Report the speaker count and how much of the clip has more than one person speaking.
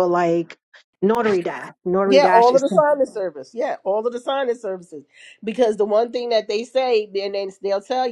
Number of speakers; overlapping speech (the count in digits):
2, about 7%